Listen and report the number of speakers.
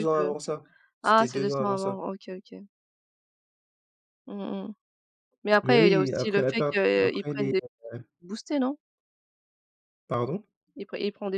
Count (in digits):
2